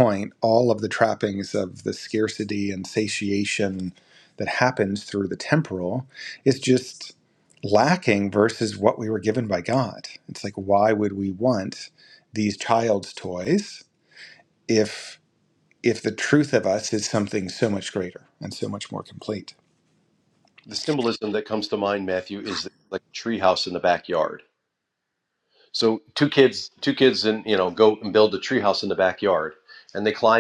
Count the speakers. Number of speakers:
two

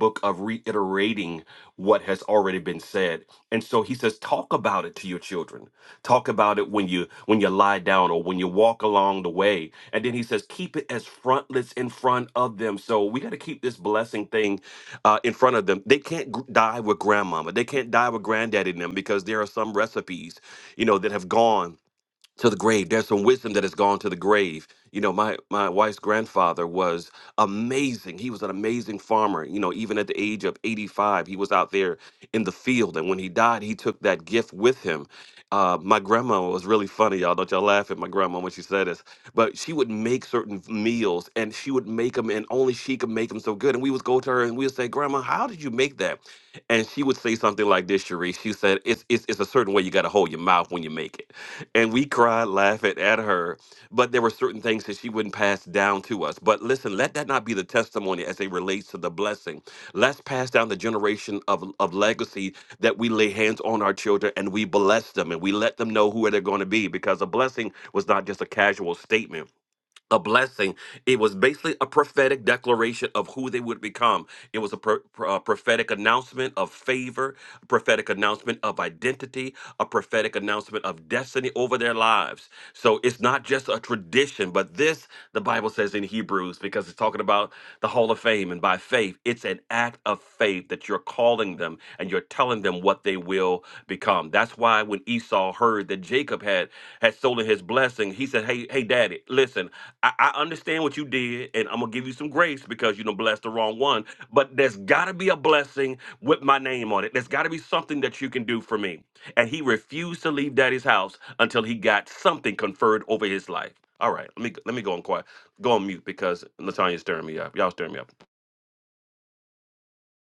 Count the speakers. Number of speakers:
one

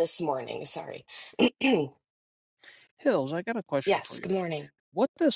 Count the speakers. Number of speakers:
two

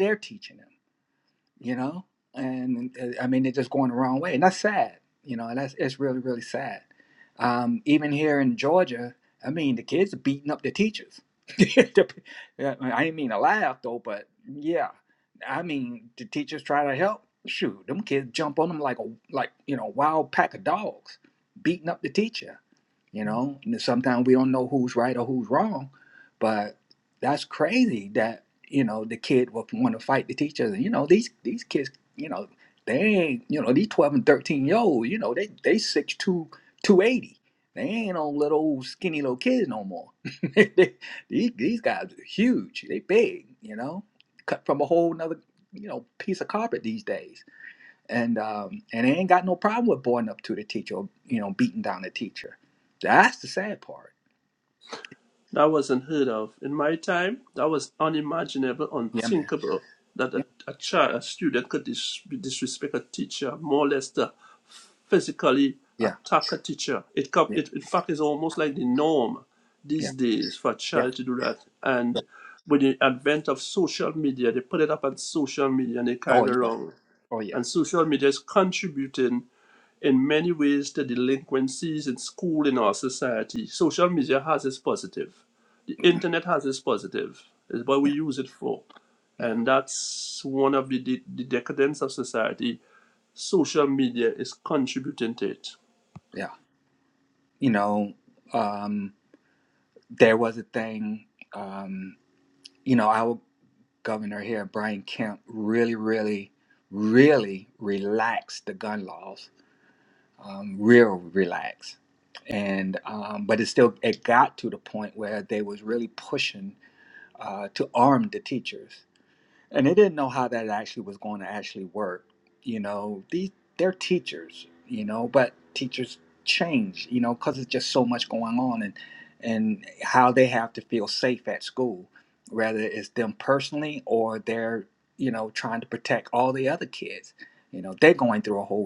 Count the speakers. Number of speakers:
two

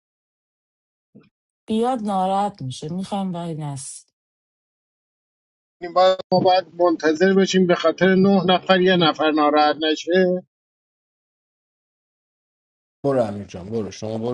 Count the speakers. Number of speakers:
three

